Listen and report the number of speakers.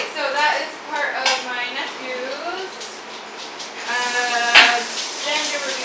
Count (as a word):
one